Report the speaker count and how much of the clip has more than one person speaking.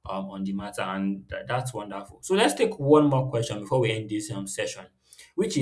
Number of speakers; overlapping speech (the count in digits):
1, no overlap